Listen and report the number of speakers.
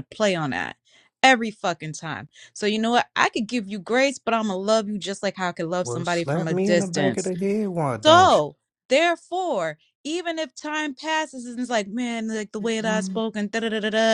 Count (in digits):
2